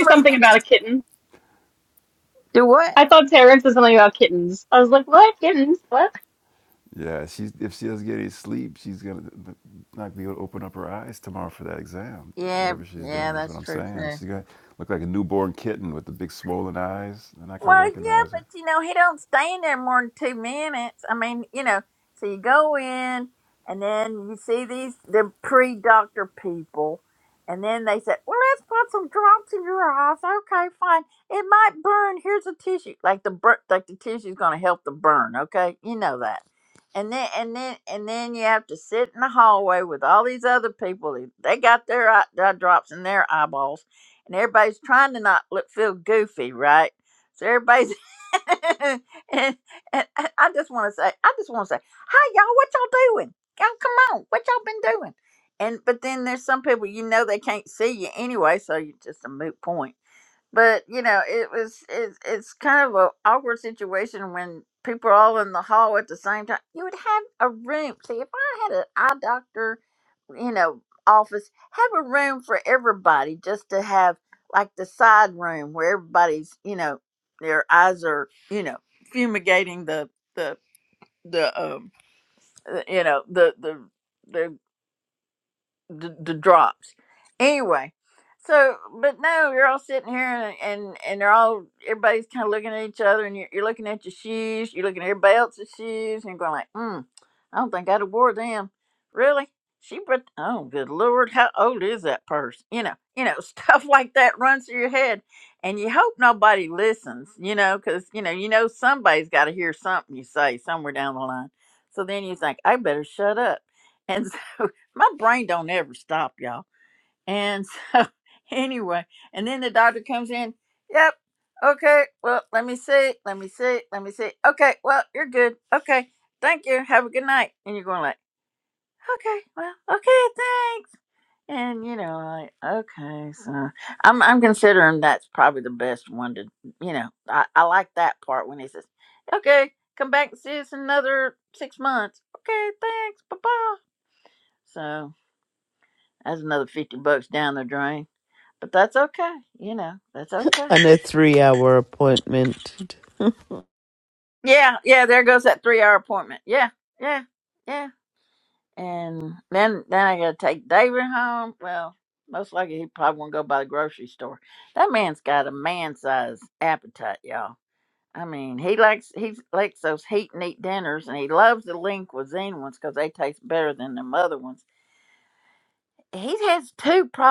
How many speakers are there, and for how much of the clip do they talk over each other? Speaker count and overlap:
four, about 2%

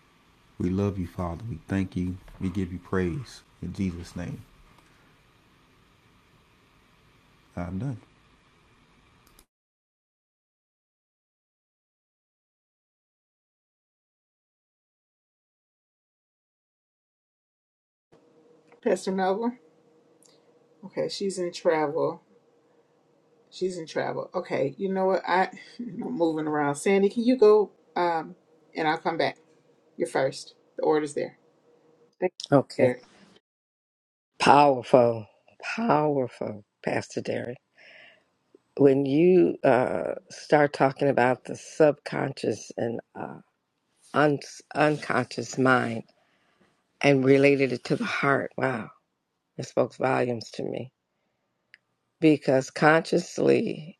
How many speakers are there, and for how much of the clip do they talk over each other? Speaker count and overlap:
three, under 1%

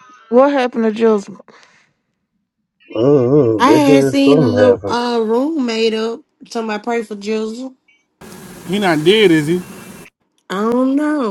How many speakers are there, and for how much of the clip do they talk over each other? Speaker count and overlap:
four, about 13%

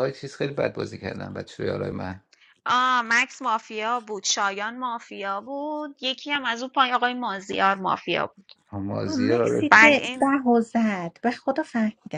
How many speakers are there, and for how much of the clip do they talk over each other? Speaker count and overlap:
three, about 10%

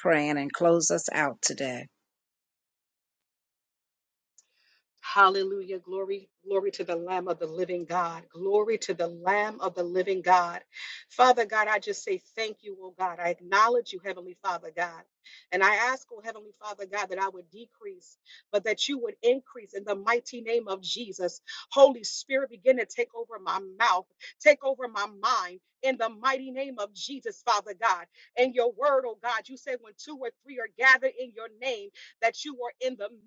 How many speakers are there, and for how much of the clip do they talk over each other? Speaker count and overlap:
two, no overlap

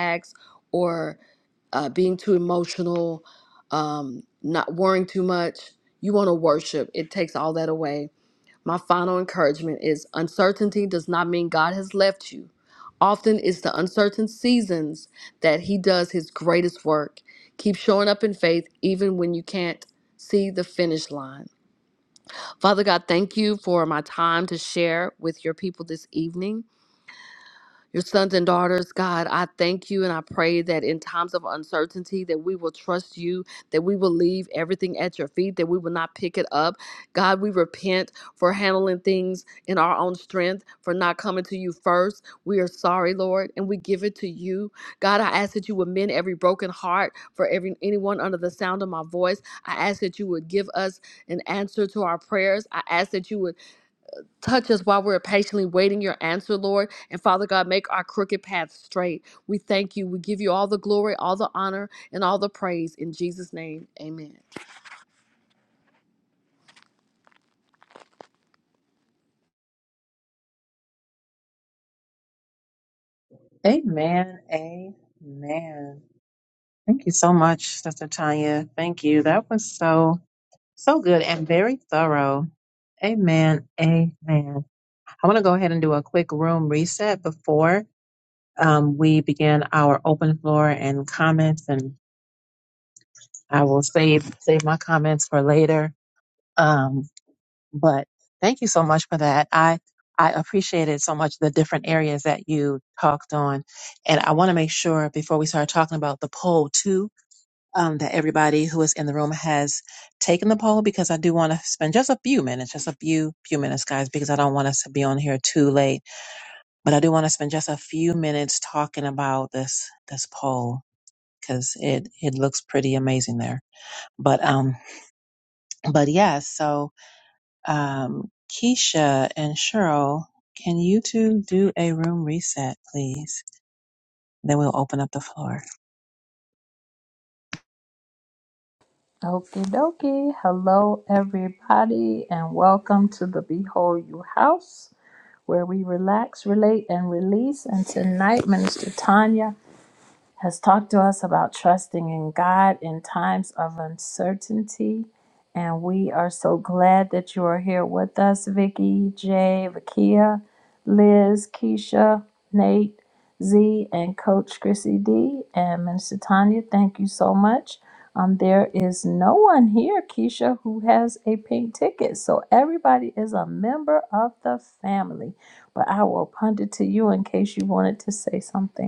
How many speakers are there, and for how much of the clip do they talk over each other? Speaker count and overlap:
three, no overlap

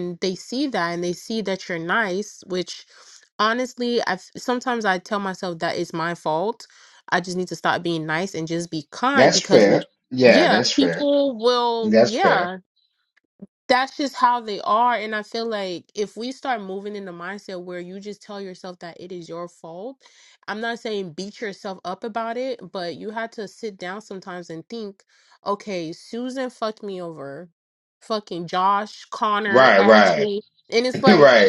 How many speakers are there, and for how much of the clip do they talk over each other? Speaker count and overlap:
two, about 10%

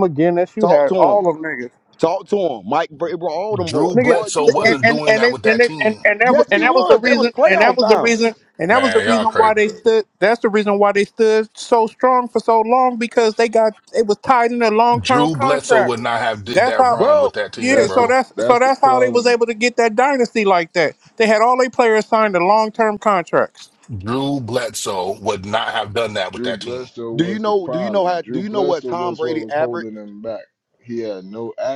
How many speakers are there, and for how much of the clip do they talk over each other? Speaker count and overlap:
four, about 40%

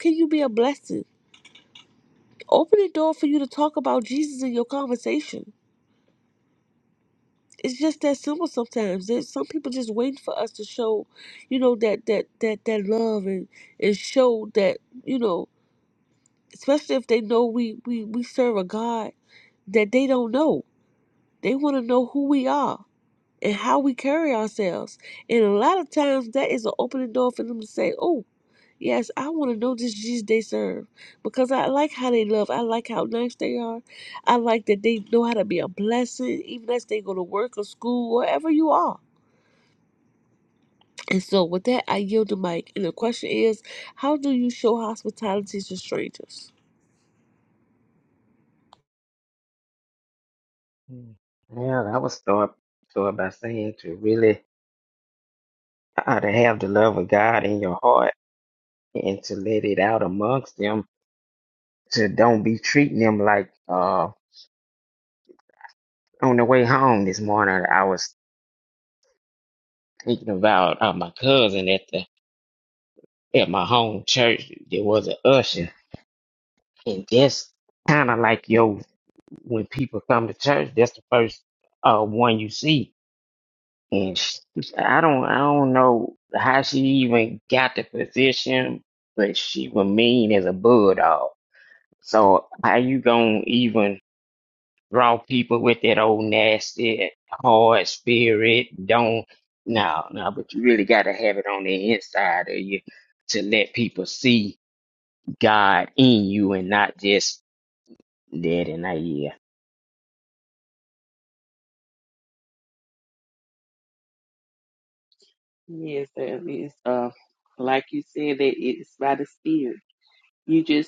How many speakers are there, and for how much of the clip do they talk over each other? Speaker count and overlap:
three, no overlap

